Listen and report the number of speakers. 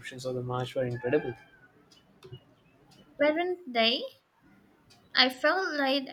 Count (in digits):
2